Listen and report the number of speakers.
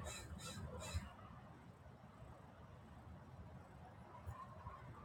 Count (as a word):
zero